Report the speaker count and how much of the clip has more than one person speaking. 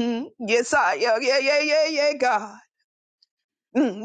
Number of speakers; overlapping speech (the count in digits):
1, no overlap